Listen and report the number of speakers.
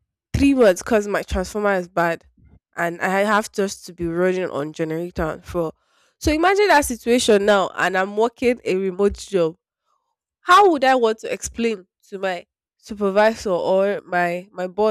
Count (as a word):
one